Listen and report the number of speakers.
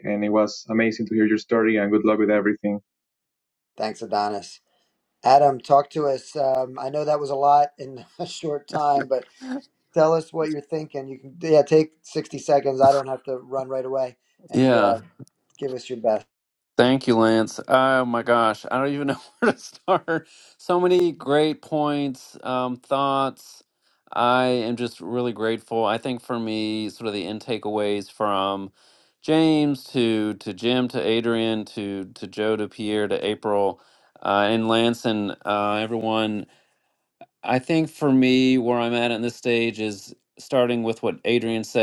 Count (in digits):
3